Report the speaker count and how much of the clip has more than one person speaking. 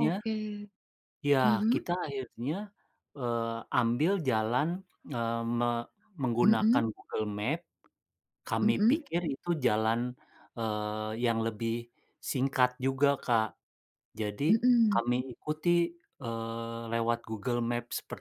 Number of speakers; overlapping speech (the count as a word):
two, about 9%